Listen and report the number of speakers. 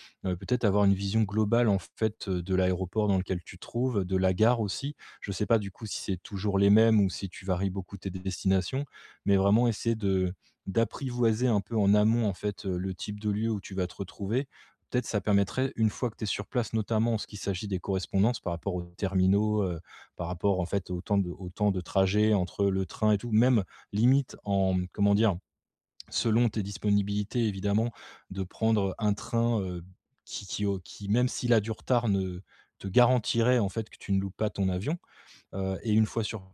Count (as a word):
one